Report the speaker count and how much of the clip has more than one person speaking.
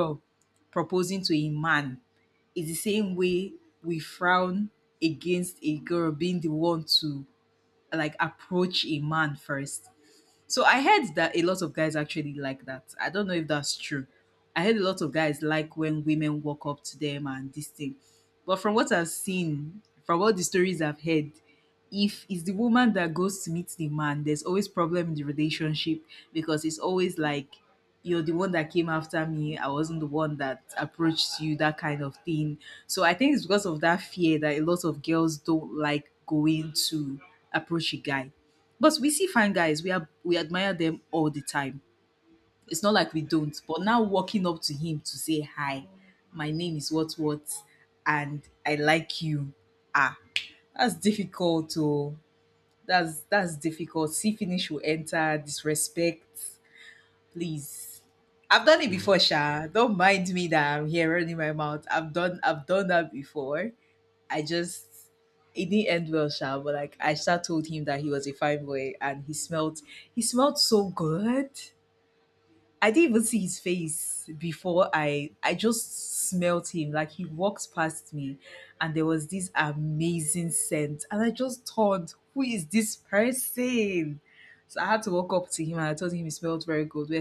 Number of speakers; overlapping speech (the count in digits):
1, no overlap